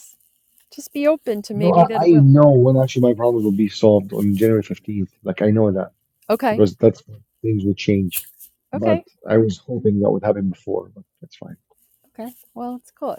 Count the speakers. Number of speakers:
two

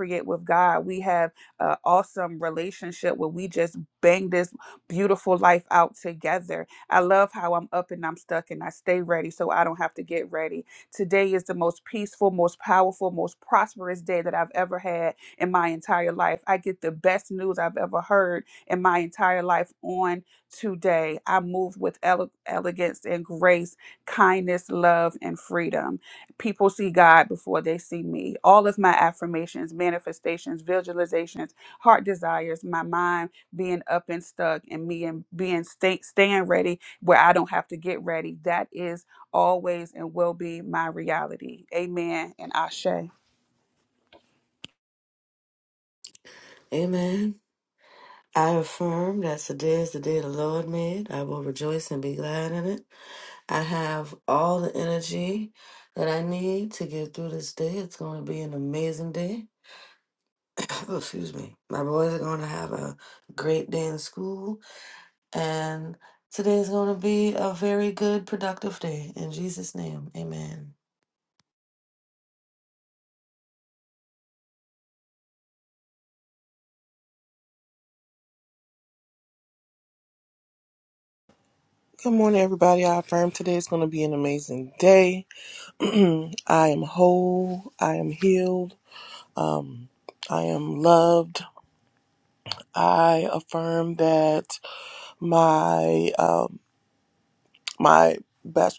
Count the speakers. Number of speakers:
three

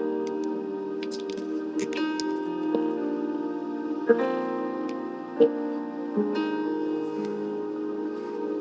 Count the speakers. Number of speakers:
zero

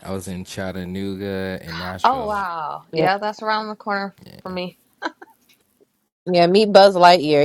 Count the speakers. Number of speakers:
three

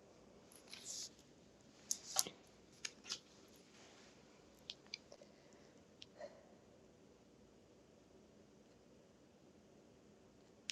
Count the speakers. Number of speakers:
zero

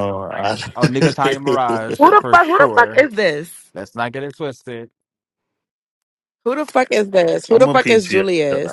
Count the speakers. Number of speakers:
three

